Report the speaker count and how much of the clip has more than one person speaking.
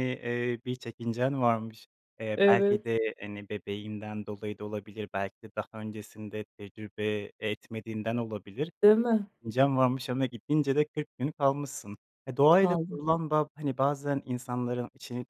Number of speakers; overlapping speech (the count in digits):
2, about 5%